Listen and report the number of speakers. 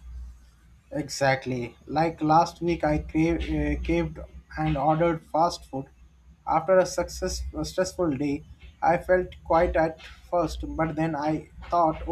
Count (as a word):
one